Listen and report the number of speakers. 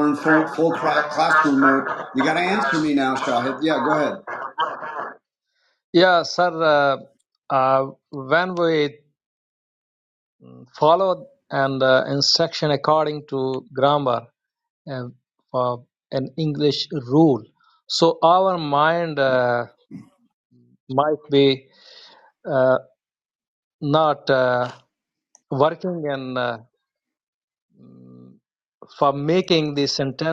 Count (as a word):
two